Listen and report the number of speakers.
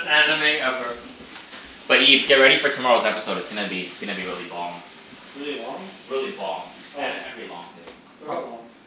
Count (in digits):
3